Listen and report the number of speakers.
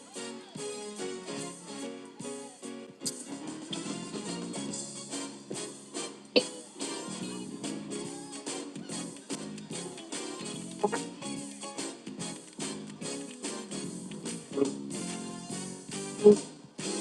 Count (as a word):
zero